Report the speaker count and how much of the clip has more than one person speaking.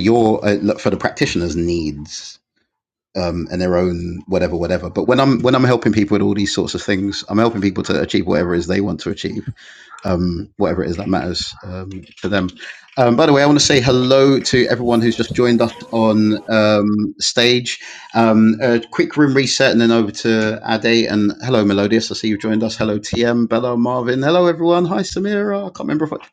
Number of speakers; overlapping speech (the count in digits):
1, no overlap